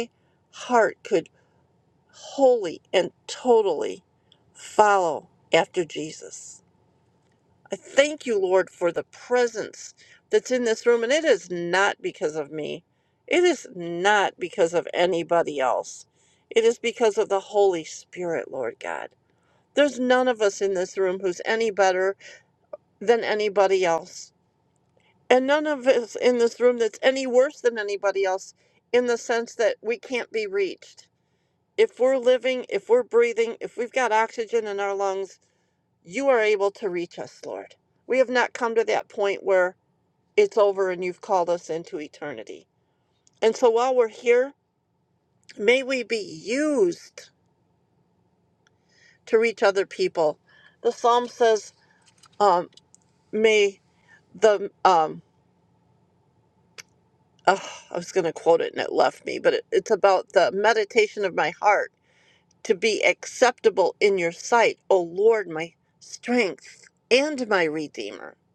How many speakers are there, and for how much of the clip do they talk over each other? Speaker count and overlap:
one, no overlap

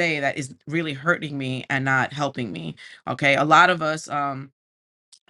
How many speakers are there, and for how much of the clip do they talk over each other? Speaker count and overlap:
one, no overlap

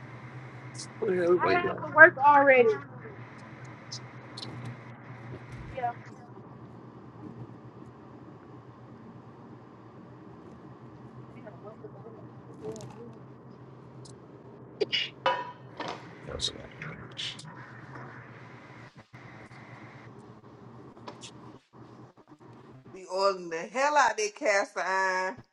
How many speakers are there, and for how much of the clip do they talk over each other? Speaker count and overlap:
three, about 1%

